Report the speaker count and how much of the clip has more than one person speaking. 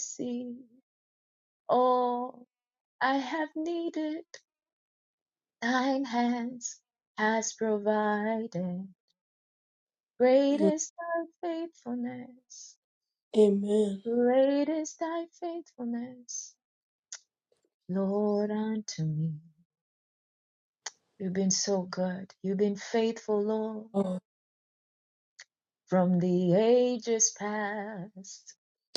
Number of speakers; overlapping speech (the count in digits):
2, about 1%